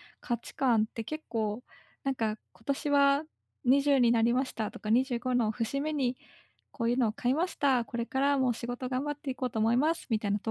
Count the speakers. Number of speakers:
one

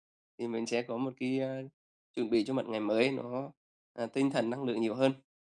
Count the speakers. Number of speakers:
one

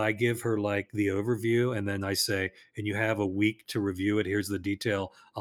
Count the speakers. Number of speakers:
one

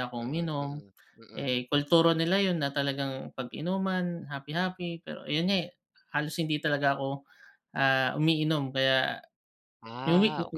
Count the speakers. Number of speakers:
two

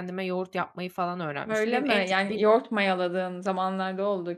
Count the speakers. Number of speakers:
two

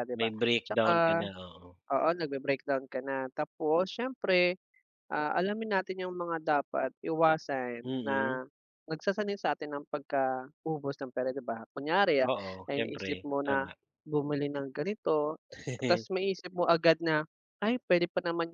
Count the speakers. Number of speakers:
two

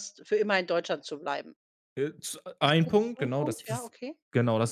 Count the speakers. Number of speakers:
two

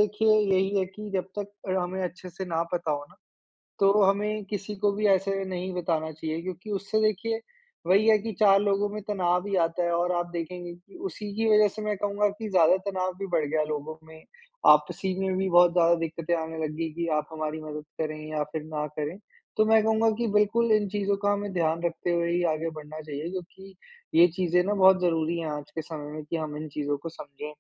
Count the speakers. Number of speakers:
one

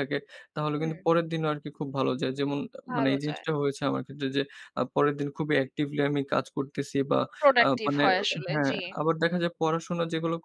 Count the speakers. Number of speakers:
two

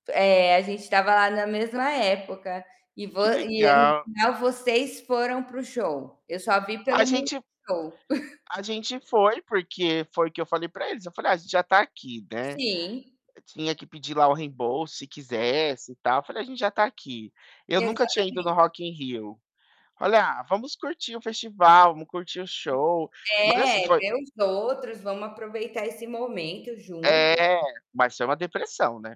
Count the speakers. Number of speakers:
two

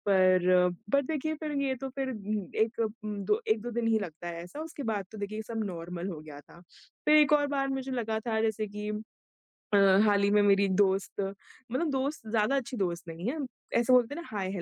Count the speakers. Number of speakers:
one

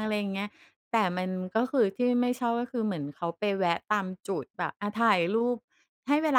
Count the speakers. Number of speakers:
one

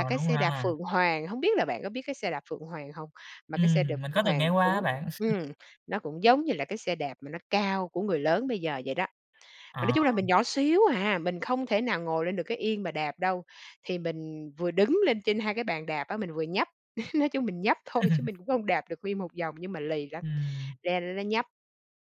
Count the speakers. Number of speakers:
two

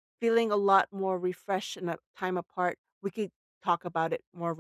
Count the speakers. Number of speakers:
one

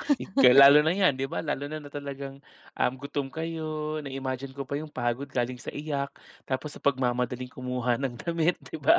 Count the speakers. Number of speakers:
one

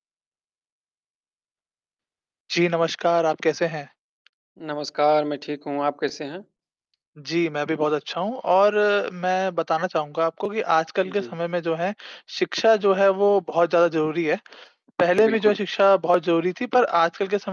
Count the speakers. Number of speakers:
two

